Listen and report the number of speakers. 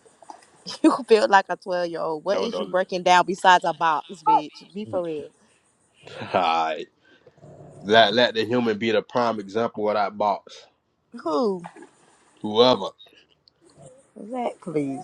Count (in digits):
2